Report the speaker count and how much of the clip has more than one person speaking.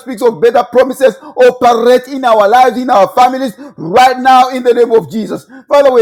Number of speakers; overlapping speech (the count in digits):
1, no overlap